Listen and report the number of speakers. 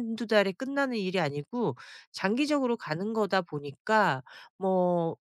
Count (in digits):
1